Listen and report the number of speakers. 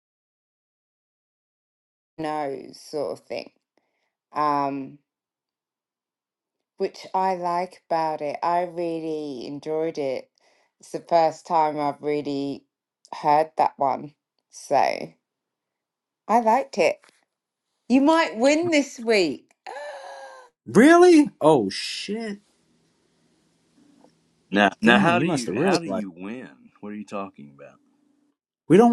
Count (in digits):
3